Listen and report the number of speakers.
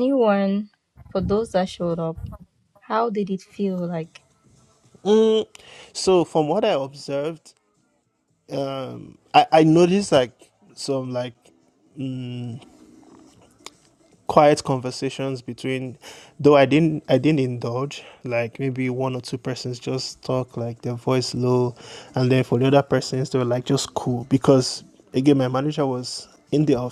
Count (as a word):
two